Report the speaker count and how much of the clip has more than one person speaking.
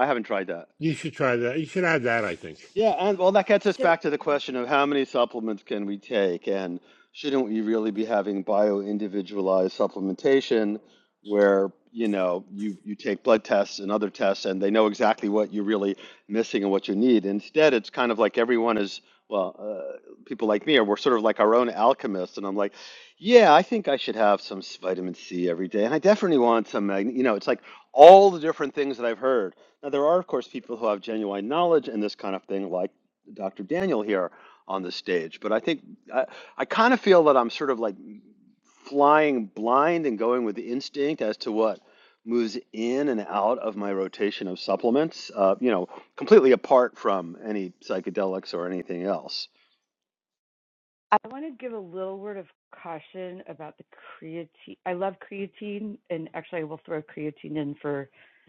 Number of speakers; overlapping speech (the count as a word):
three, under 1%